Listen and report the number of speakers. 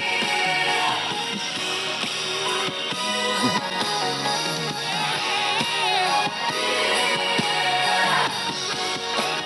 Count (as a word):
zero